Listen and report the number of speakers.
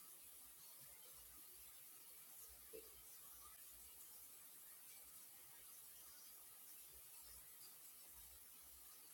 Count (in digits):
0